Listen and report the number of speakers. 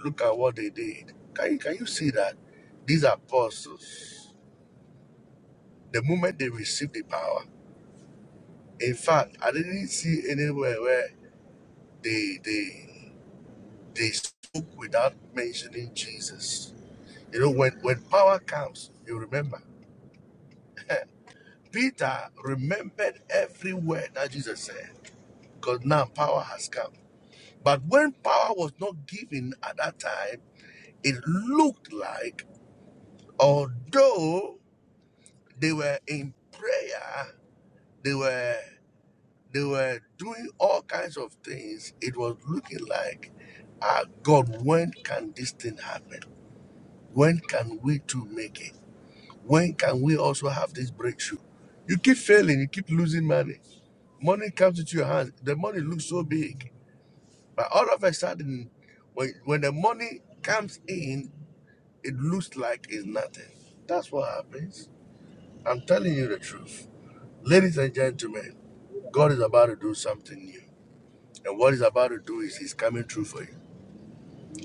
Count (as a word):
one